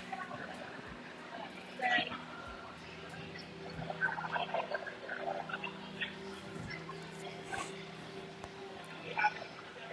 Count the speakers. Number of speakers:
zero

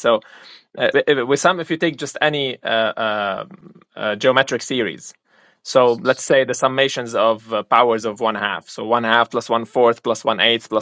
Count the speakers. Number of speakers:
one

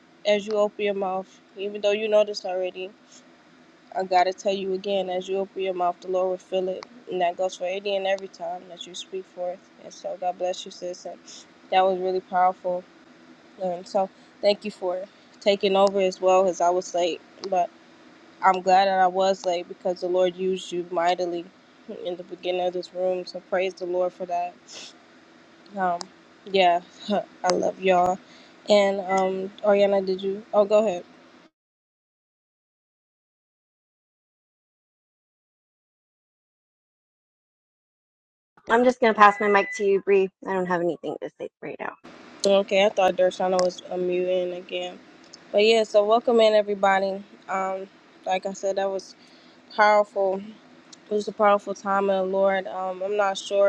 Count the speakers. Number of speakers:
two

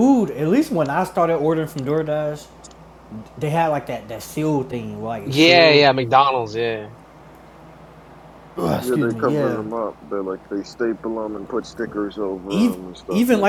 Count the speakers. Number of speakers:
three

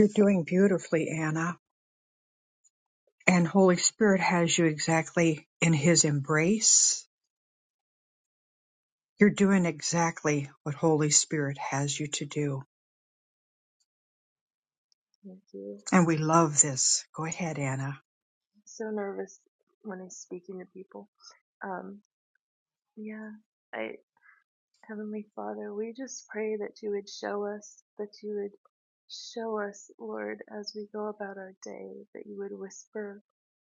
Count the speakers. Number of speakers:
two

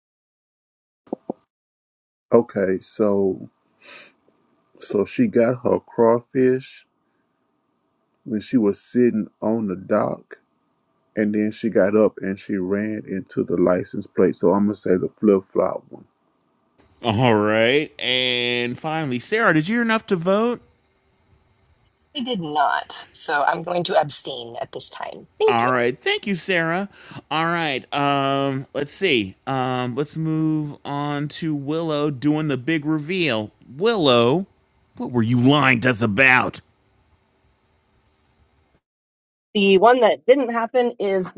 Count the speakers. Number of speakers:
four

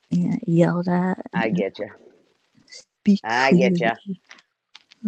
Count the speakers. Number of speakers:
two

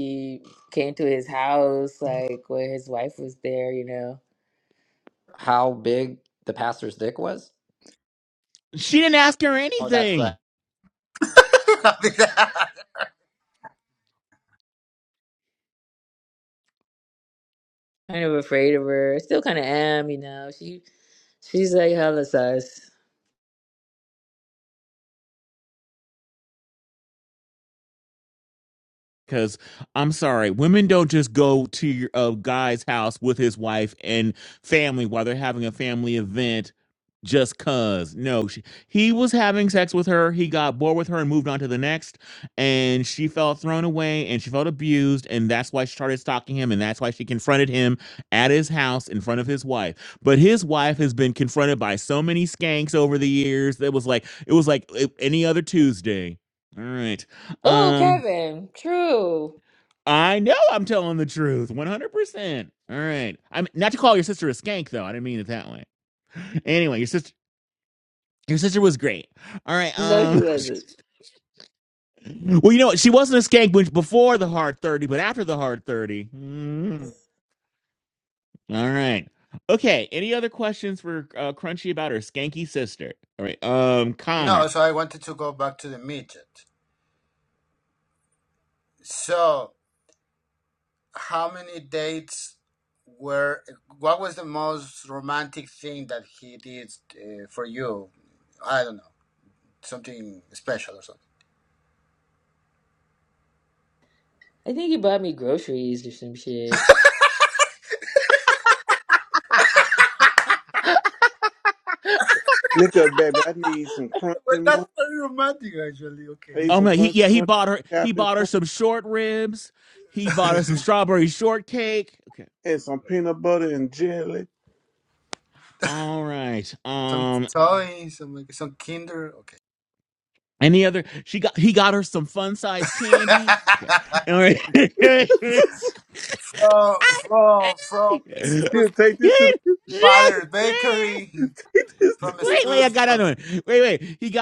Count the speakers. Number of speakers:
five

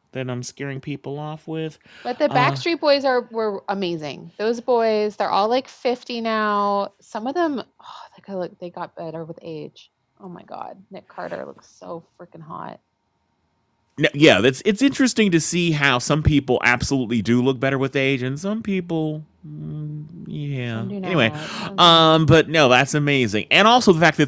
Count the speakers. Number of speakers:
two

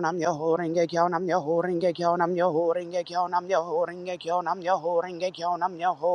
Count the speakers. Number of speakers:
one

